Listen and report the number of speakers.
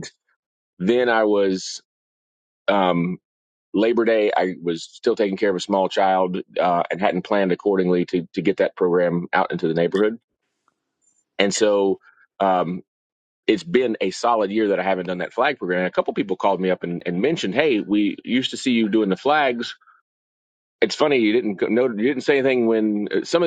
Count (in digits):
1